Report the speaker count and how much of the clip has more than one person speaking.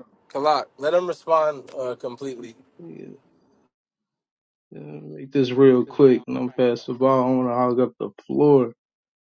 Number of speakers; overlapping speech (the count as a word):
two, no overlap